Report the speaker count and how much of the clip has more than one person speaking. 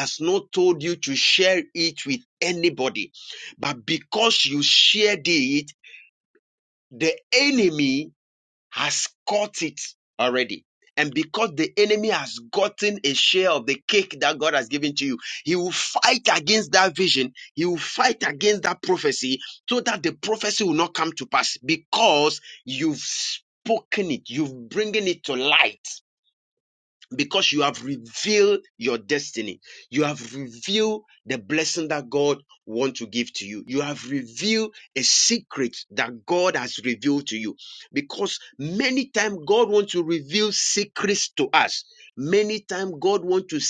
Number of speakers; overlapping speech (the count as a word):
one, no overlap